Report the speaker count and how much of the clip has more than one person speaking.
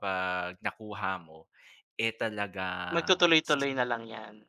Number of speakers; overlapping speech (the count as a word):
two, about 6%